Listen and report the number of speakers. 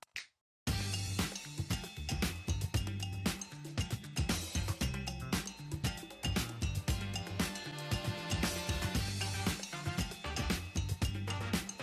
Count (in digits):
0